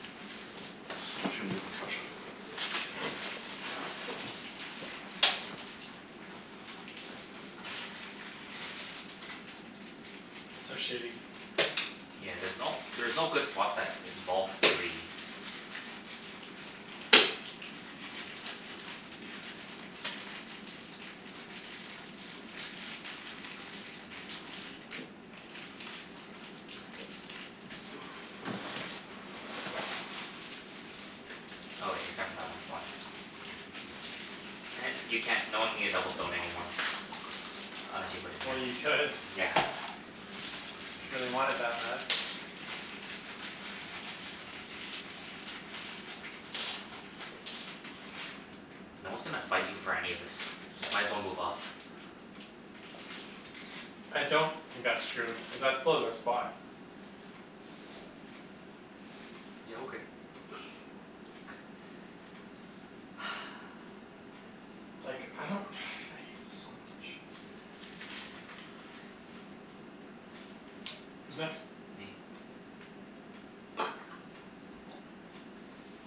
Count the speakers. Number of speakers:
3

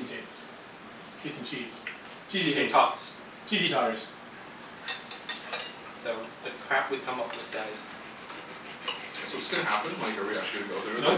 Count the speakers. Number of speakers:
3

